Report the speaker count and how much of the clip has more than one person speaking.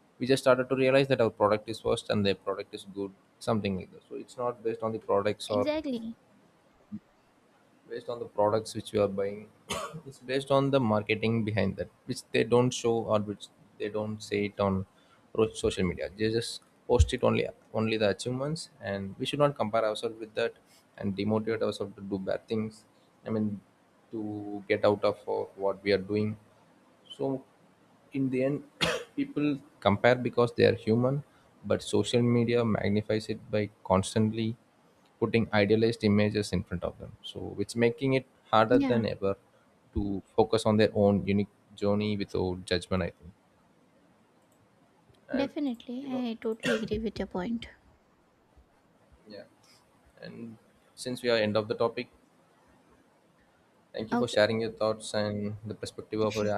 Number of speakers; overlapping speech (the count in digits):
2, about 2%